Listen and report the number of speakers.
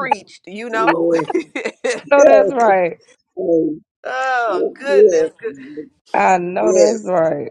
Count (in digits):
3